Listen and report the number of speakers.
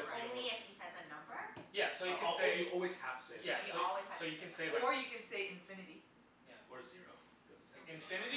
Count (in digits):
4